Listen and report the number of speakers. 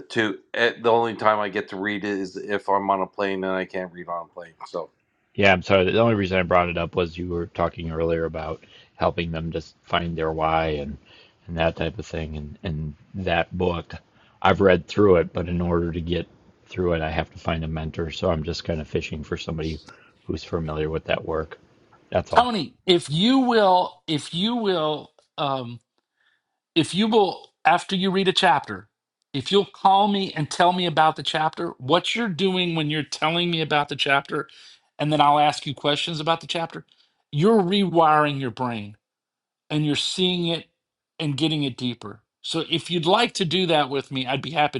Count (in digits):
3